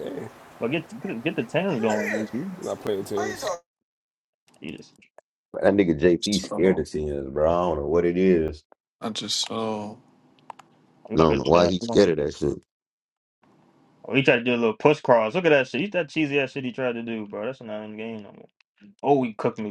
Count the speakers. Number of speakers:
4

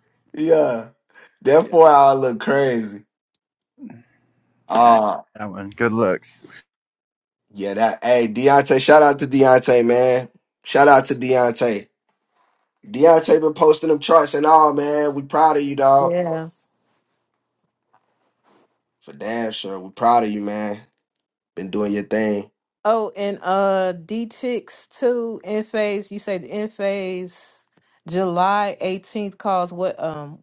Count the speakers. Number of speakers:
3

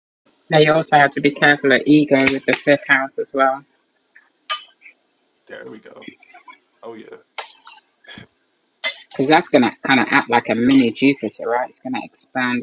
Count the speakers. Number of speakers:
2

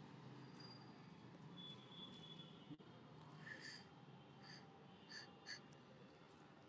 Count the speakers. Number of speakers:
0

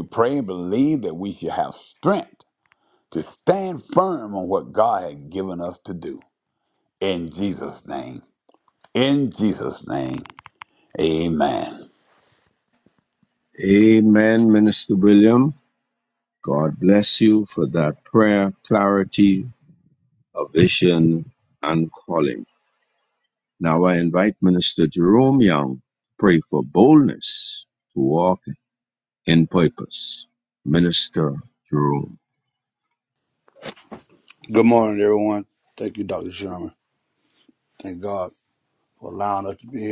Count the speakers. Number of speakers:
3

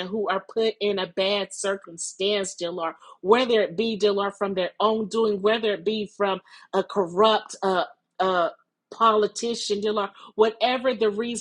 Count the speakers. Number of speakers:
1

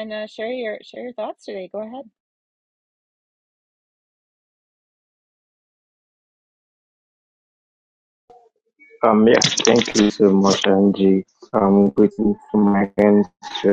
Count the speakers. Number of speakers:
2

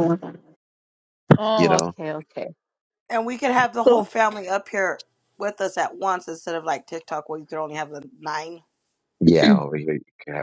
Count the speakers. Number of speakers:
3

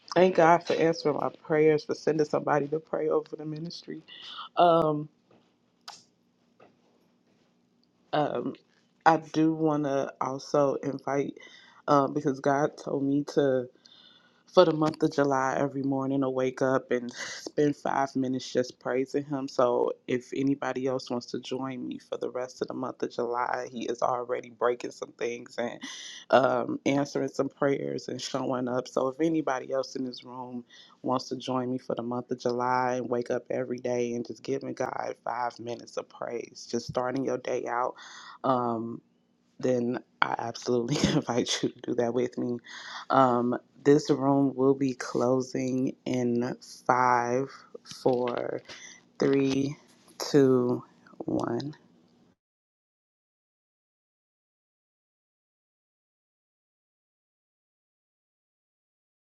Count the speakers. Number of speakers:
1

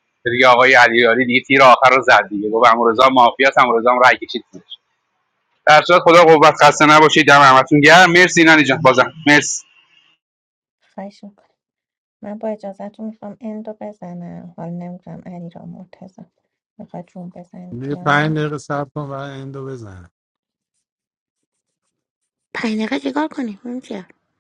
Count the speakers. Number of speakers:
4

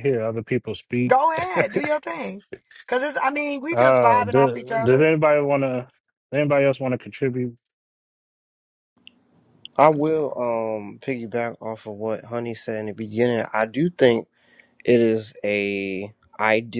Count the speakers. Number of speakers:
3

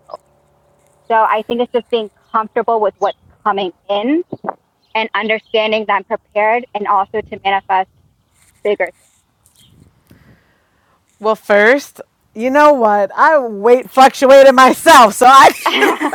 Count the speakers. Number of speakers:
2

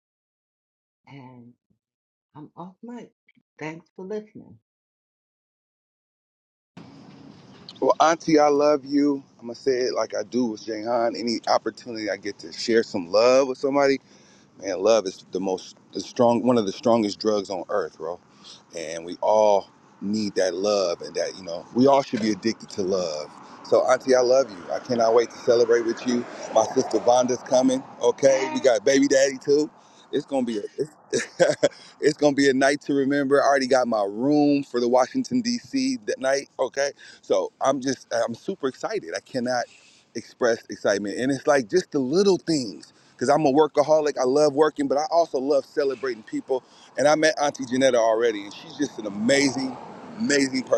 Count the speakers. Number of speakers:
2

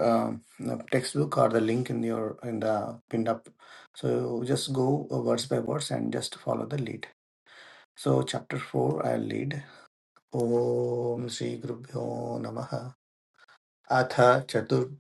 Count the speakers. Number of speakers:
1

